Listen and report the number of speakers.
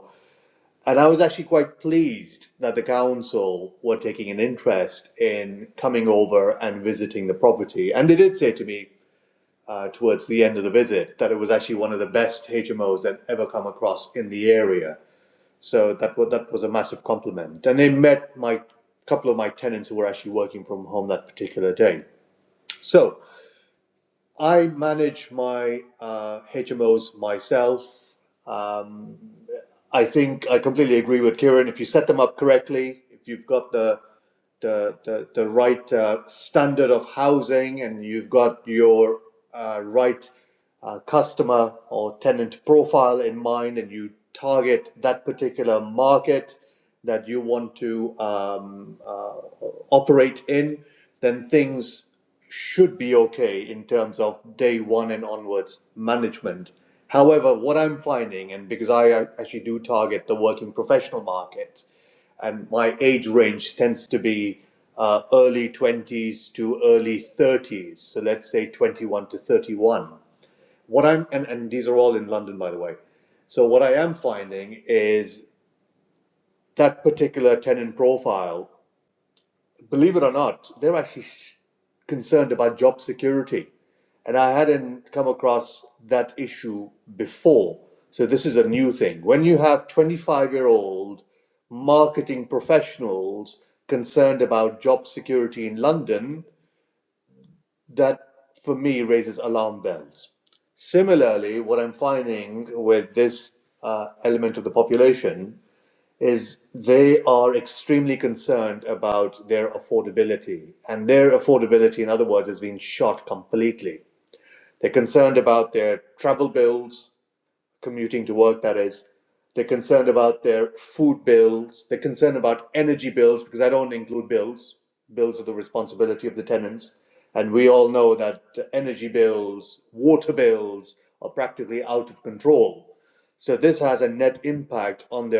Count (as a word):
one